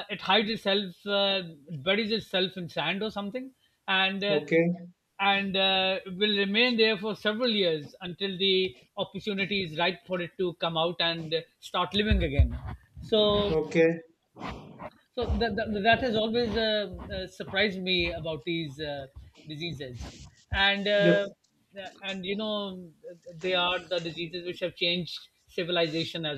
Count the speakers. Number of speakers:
two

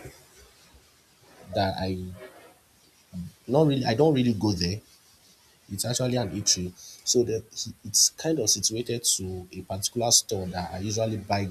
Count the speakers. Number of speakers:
one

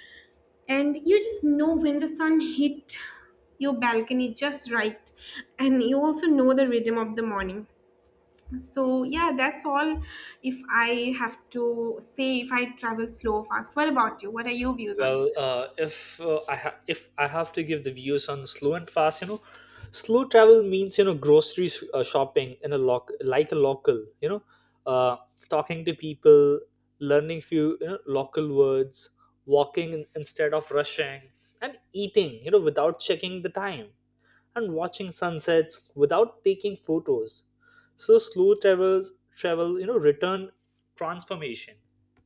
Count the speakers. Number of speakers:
two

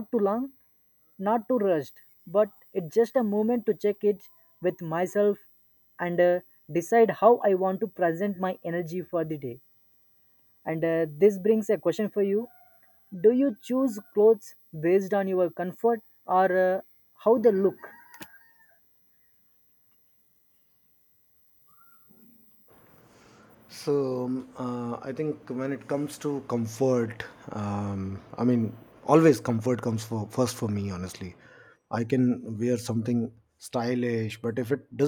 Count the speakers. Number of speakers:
two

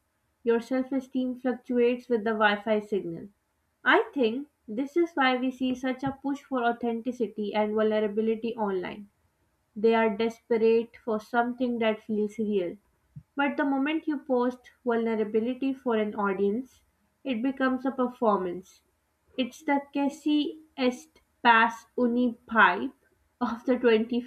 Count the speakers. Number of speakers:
one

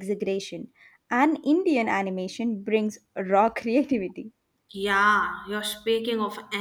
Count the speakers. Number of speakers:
two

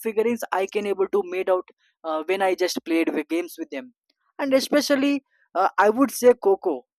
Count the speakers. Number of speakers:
one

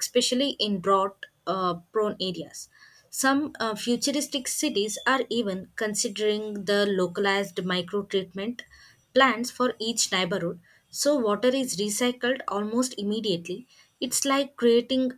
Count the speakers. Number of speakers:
one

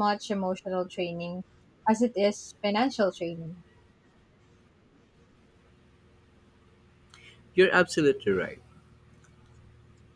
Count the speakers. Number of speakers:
two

